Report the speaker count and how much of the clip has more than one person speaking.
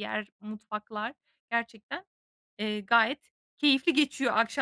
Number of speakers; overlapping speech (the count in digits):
1, no overlap